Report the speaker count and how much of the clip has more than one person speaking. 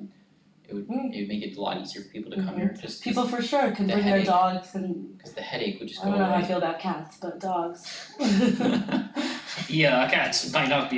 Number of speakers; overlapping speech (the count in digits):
3, about 22%